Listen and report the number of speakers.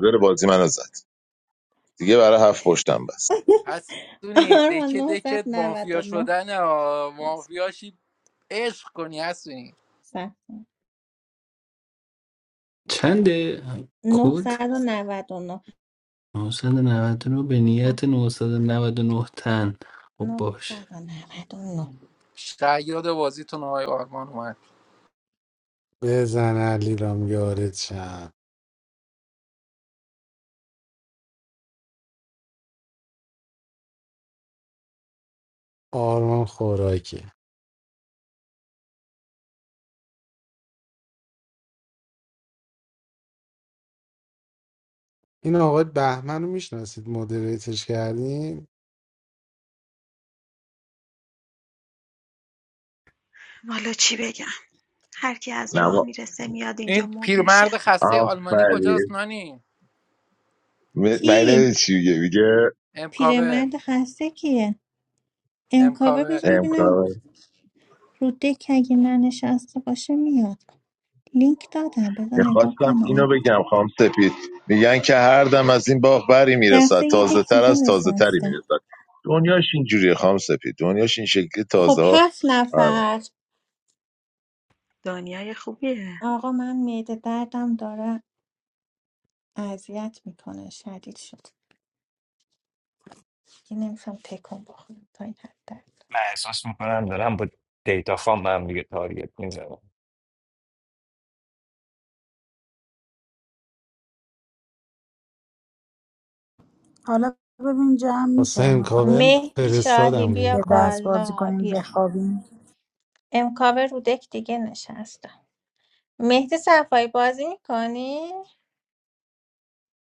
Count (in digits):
8